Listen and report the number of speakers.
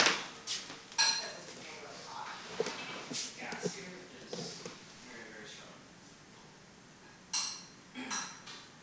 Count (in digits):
2